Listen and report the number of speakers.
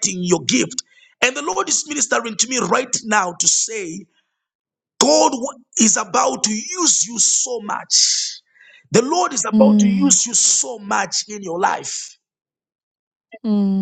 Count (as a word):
two